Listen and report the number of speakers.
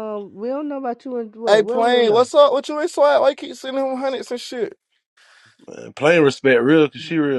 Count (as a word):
three